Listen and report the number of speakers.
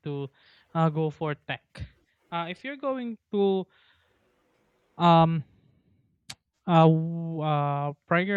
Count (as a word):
one